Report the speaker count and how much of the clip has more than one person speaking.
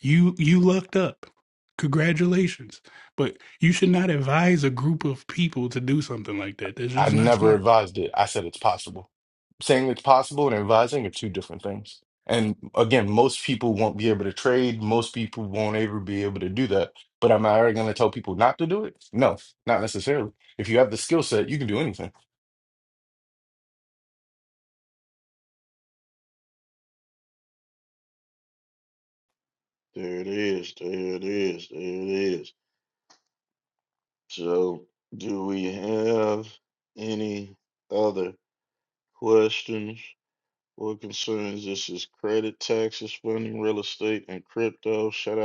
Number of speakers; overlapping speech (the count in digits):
3, about 1%